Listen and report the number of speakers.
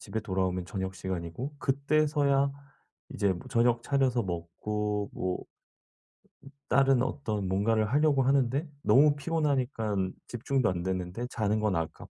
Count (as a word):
one